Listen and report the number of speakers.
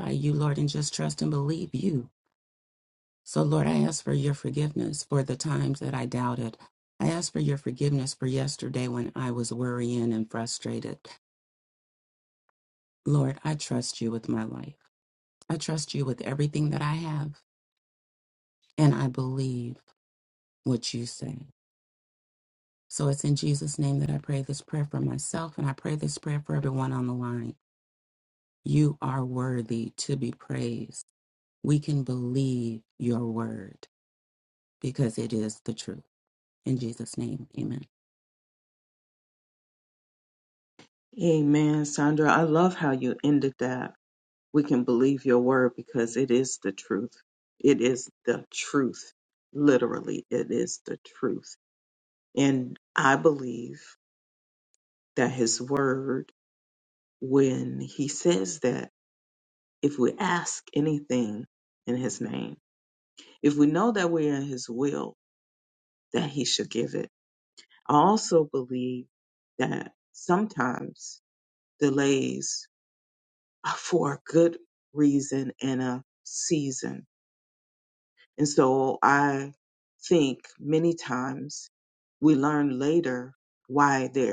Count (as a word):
two